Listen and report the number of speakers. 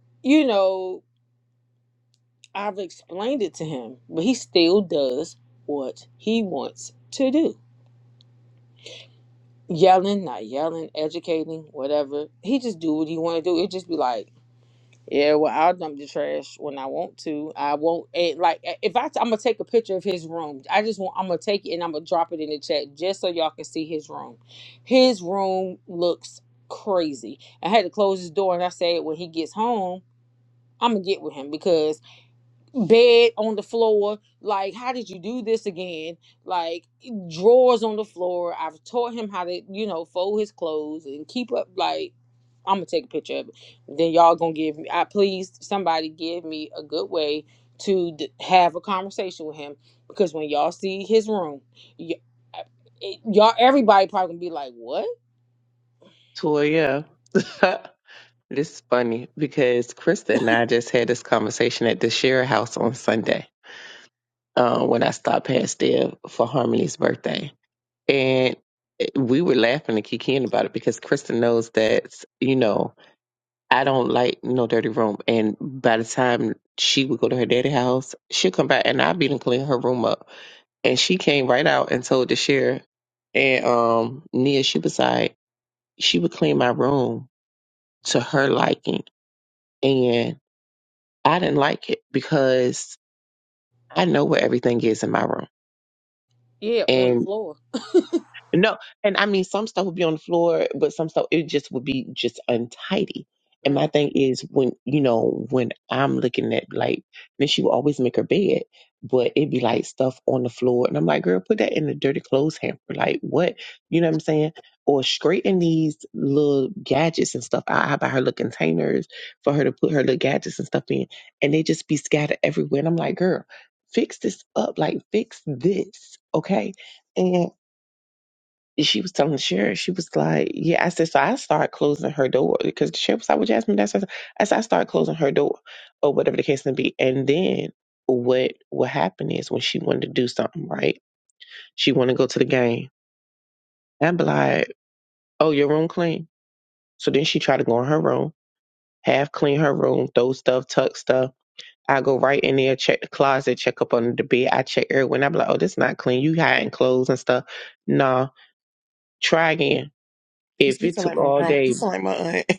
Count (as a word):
three